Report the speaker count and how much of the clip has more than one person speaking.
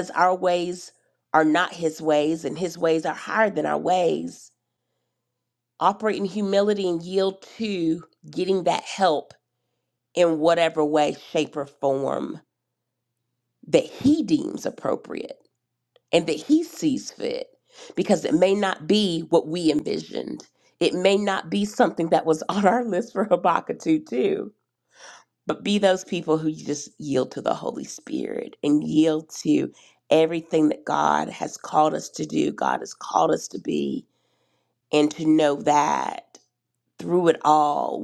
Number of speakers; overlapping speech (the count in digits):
1, no overlap